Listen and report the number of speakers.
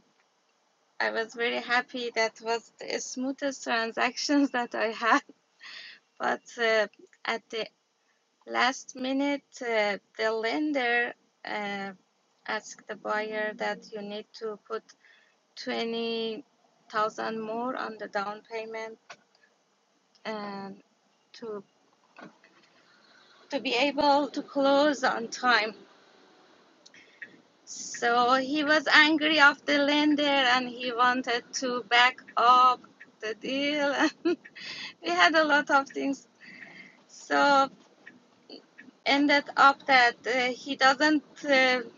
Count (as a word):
one